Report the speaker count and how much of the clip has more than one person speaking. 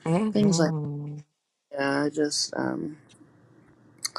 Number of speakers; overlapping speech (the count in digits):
2, about 9%